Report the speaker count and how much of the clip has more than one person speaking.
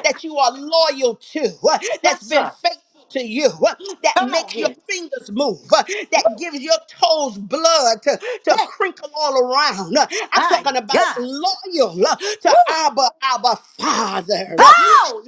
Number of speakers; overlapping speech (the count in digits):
2, about 18%